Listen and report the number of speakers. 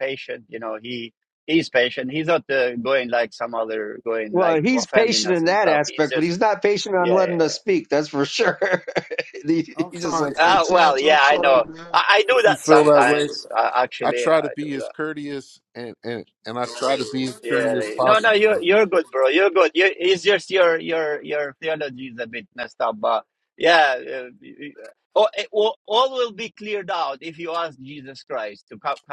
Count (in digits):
3